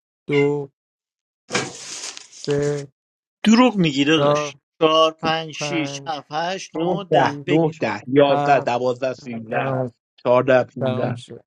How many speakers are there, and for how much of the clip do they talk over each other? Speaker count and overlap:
three, about 24%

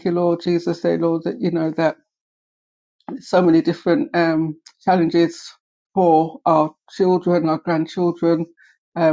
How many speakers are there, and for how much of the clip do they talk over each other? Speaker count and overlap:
one, no overlap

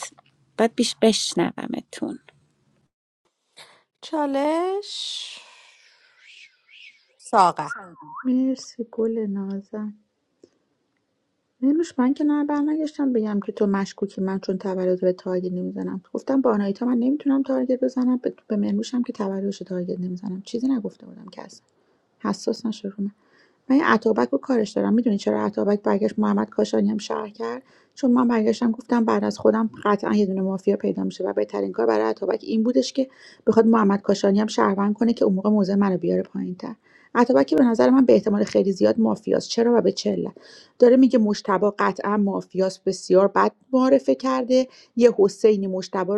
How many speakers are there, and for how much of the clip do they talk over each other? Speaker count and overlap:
three, no overlap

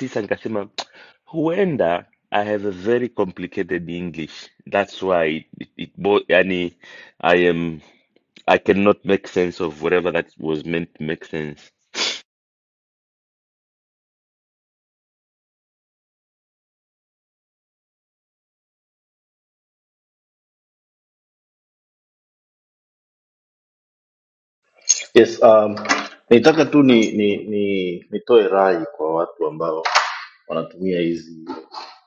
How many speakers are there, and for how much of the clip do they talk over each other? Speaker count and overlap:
two, no overlap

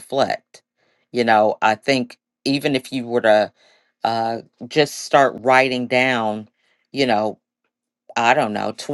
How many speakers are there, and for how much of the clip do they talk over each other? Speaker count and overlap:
one, no overlap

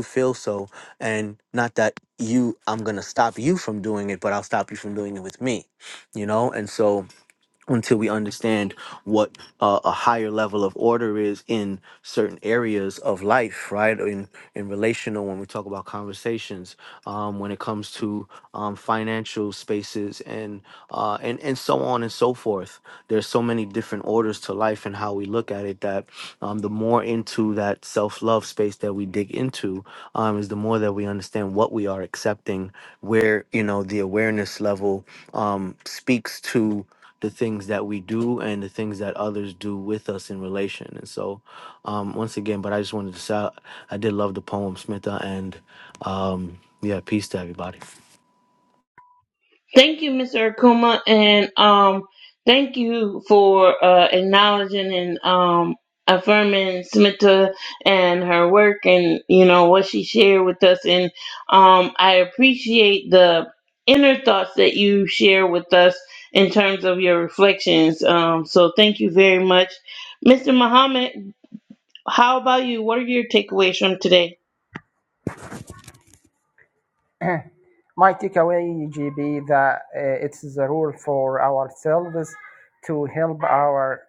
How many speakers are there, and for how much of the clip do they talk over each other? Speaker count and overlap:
three, no overlap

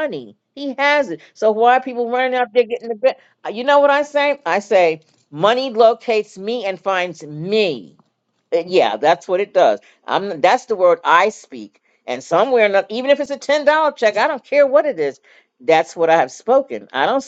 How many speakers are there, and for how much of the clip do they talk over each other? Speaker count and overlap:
one, no overlap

